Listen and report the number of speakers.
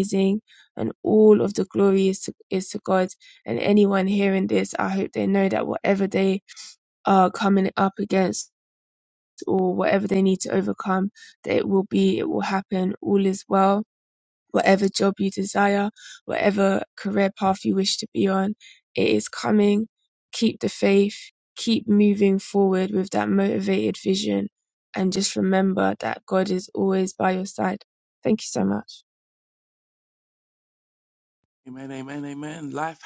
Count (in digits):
2